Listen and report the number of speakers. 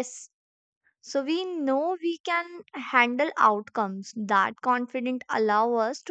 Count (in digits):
1